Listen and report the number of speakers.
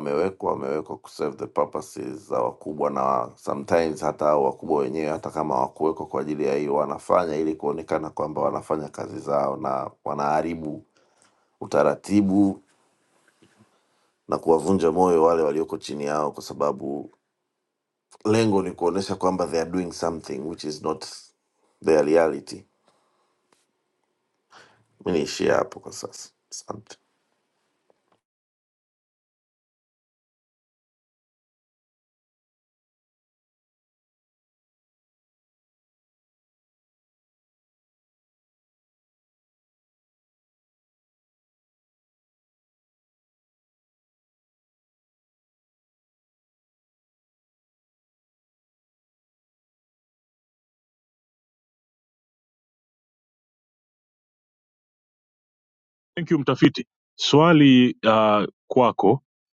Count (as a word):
two